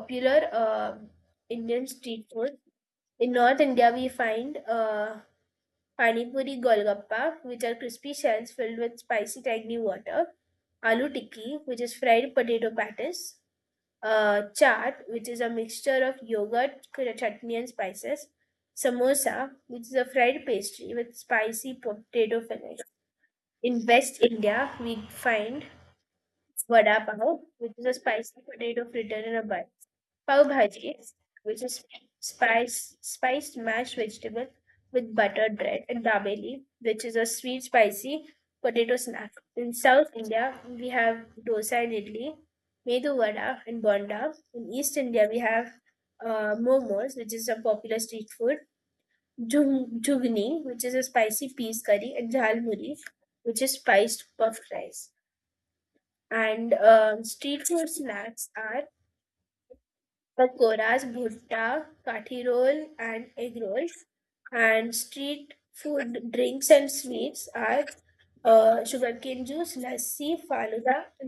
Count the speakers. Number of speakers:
one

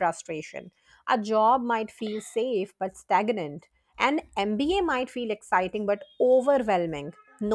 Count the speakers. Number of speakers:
one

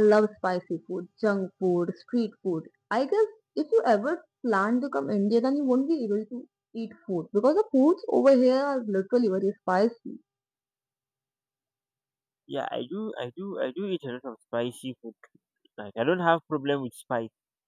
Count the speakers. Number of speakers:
two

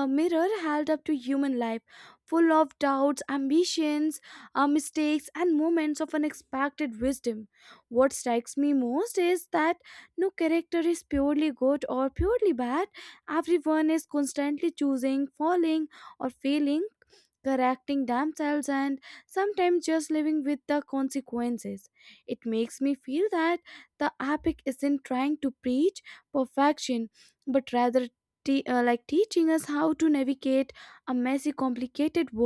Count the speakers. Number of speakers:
one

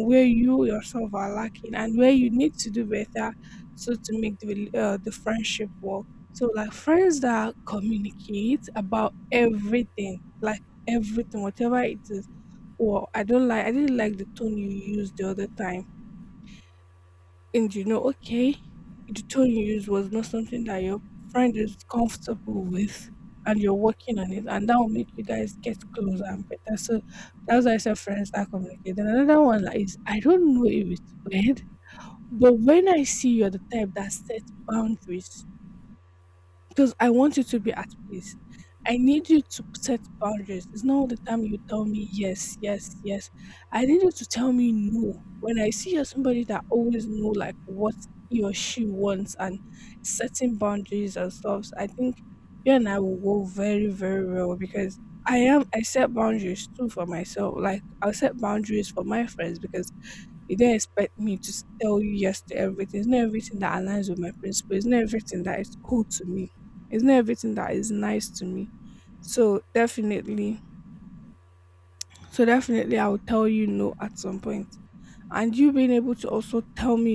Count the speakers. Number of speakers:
one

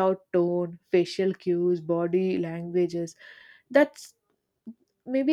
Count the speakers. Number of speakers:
one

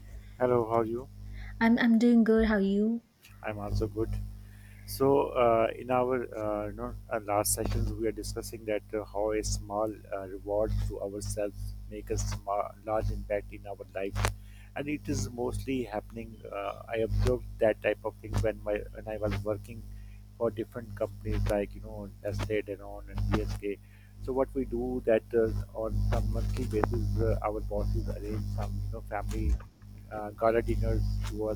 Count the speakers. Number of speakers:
two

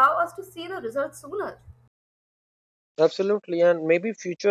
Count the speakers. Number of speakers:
two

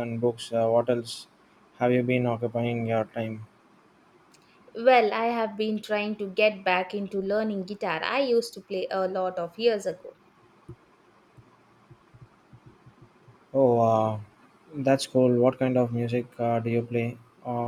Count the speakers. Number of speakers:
two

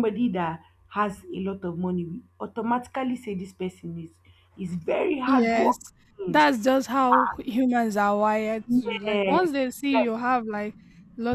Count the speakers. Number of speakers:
two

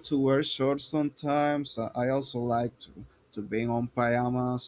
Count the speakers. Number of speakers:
one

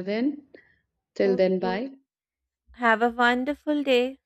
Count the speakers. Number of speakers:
two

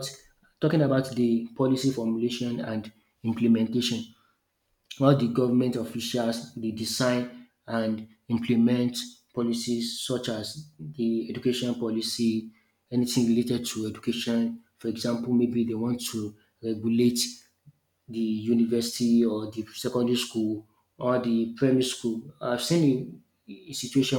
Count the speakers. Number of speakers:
one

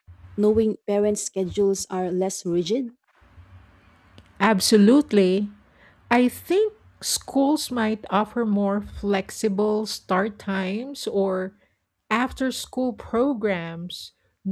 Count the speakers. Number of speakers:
two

